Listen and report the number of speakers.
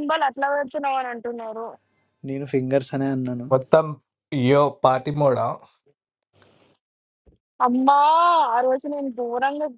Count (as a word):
three